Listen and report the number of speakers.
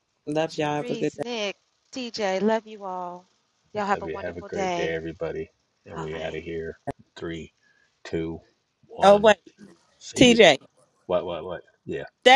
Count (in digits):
3